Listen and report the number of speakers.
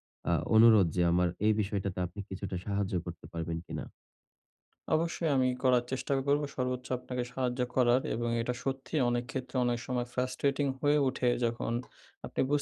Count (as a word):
two